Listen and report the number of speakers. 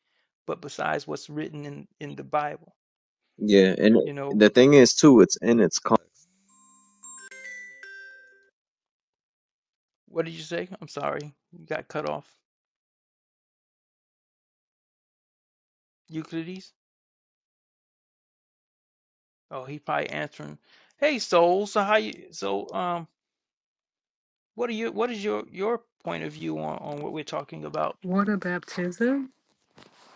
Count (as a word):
three